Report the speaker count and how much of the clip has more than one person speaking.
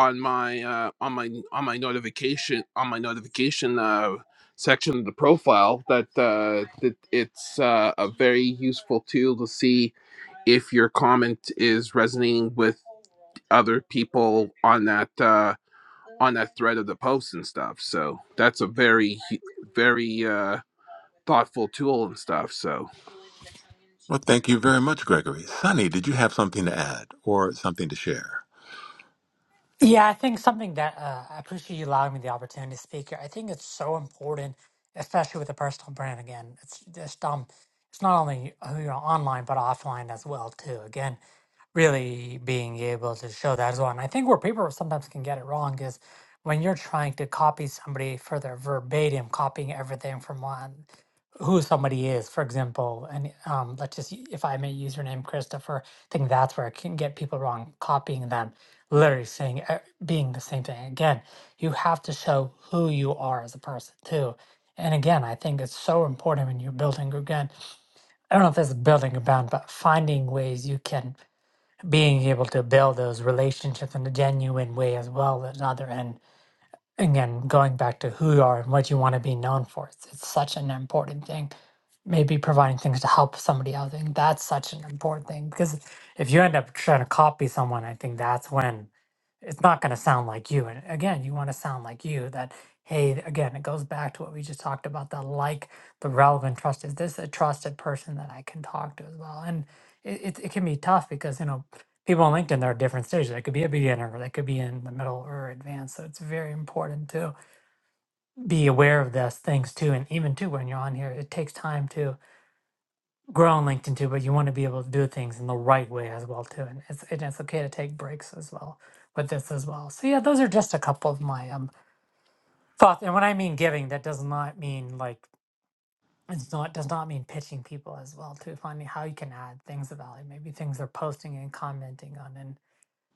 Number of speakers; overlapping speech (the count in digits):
3, no overlap